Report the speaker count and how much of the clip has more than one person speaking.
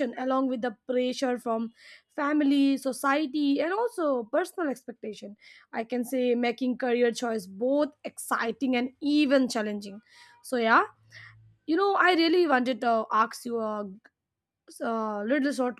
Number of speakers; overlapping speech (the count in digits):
1, no overlap